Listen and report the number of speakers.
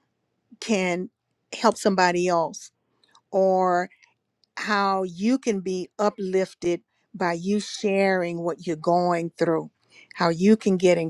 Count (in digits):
1